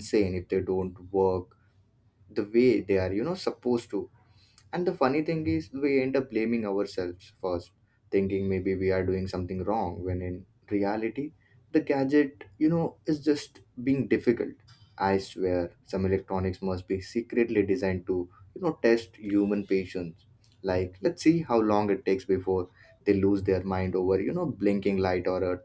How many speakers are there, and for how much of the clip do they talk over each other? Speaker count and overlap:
one, no overlap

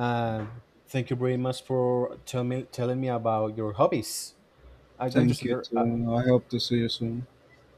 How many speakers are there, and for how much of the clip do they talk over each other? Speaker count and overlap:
two, about 10%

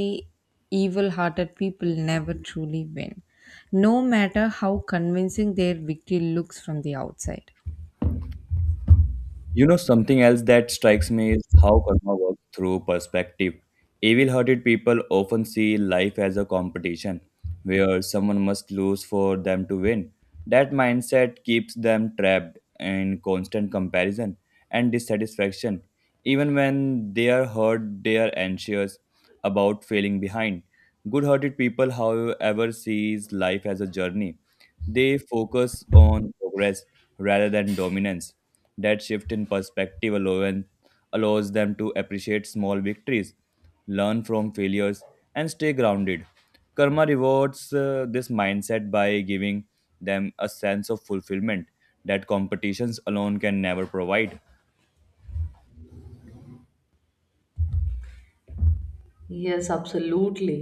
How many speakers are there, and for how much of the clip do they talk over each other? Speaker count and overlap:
three, no overlap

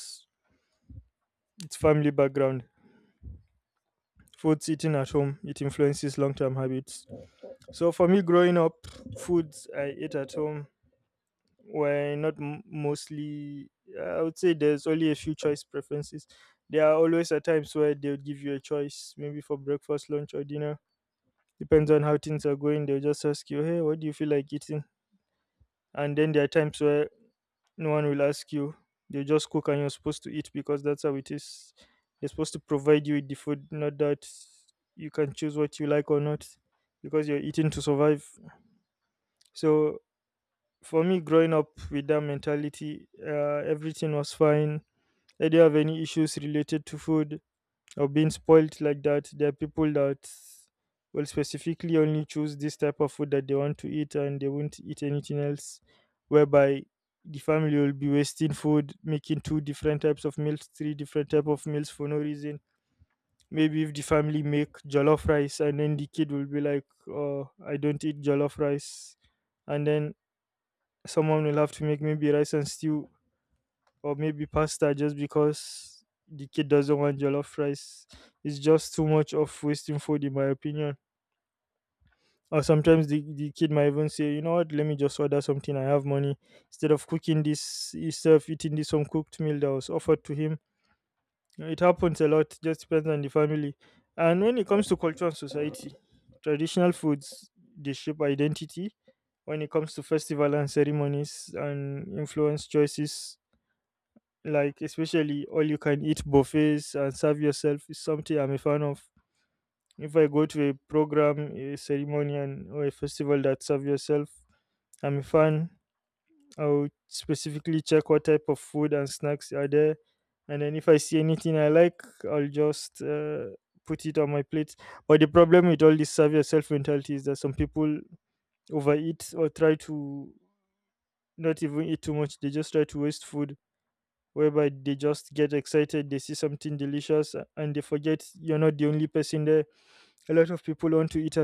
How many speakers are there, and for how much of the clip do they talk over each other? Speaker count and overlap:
one, no overlap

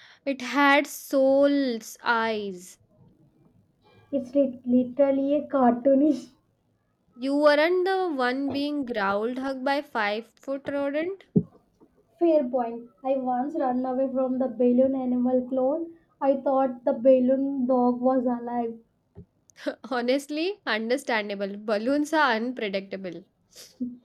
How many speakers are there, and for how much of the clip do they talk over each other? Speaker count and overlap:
two, no overlap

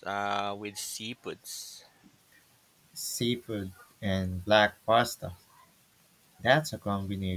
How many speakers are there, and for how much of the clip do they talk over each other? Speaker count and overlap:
two, no overlap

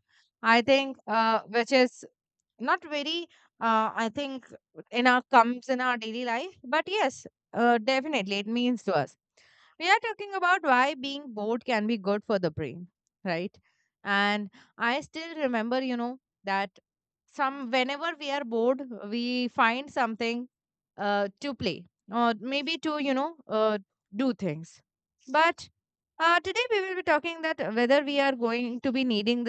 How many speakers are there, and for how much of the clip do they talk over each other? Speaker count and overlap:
one, no overlap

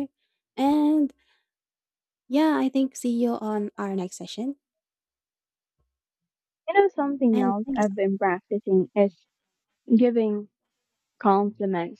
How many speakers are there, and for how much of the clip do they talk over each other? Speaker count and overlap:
two, about 4%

